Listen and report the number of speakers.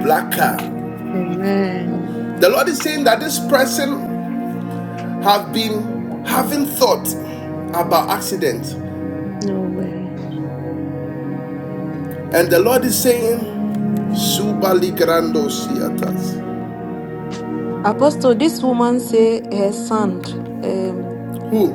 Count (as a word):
three